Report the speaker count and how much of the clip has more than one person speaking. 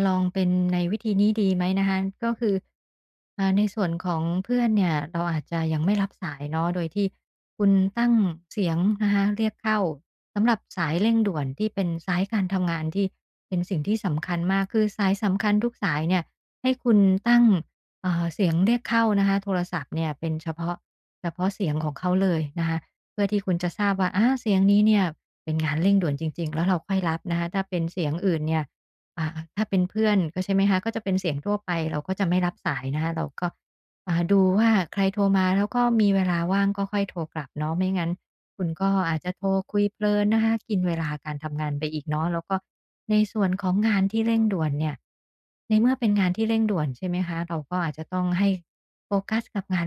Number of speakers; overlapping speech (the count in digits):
1, no overlap